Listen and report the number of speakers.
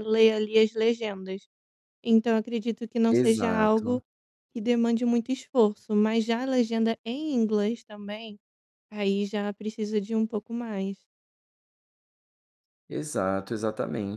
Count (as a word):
two